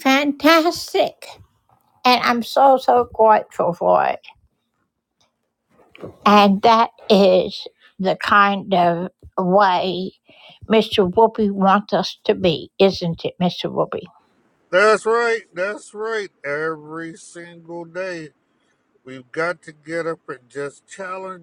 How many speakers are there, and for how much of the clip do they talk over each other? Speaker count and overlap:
two, no overlap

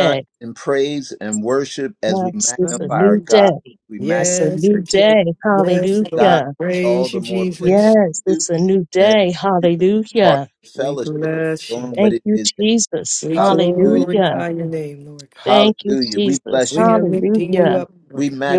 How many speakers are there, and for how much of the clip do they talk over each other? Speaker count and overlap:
three, about 60%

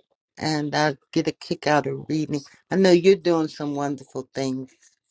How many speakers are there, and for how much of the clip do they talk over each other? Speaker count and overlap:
one, no overlap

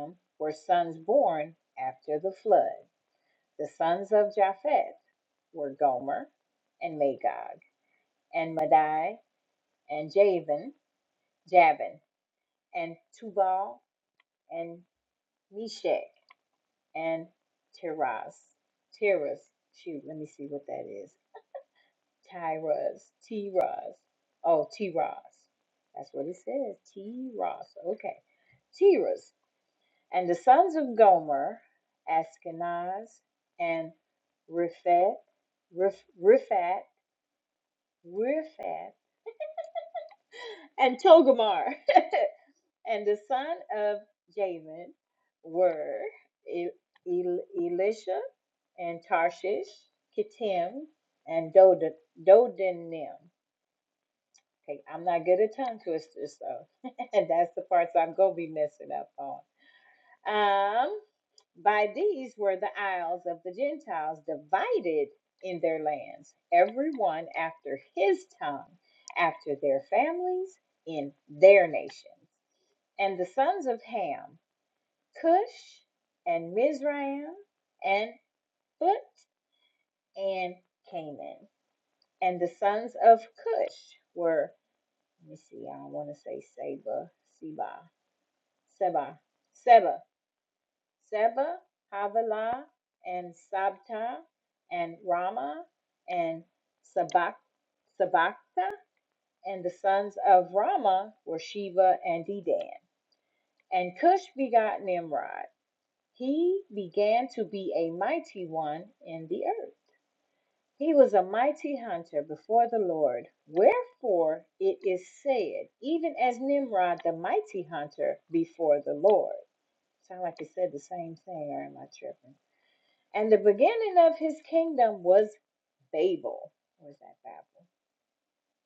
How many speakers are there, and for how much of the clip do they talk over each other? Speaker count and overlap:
one, no overlap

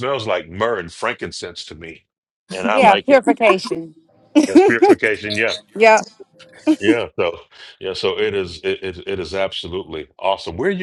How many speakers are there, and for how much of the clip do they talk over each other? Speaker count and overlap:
two, about 4%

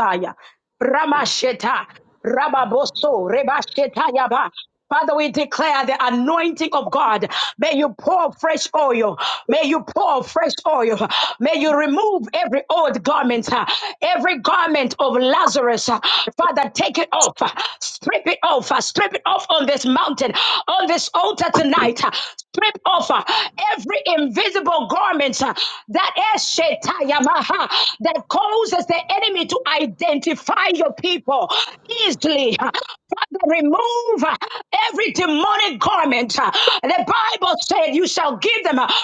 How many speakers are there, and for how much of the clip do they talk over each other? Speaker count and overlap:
one, no overlap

